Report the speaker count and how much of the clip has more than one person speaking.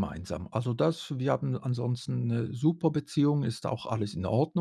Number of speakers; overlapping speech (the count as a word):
one, no overlap